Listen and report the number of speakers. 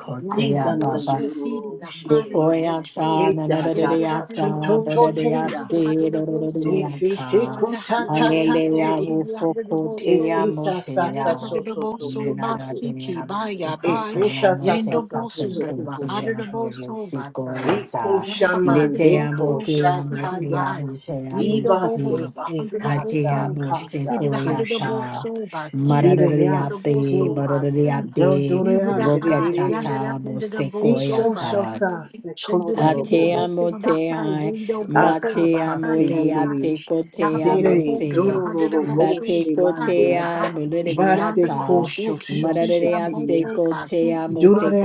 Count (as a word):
three